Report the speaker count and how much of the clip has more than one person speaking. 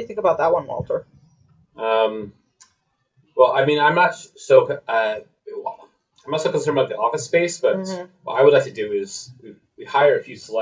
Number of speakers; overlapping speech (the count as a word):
two, about 3%